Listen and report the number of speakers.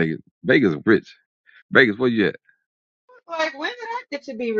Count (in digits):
2